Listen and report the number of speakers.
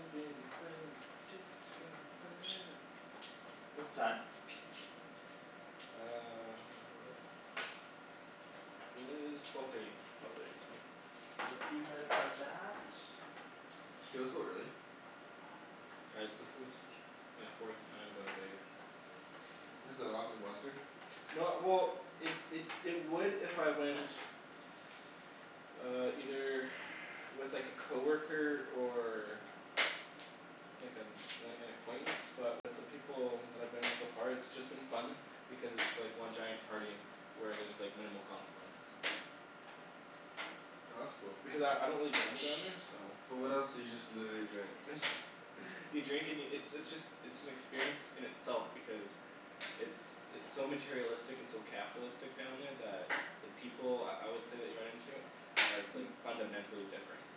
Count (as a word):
three